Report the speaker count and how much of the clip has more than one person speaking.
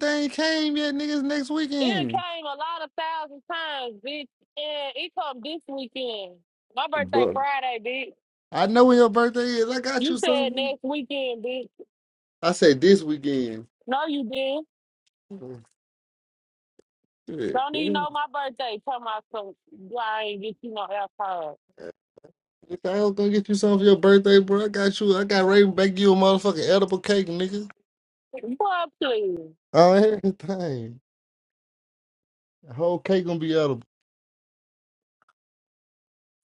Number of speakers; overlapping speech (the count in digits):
2, about 6%